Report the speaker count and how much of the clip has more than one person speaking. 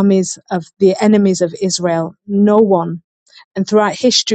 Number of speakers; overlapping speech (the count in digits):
1, no overlap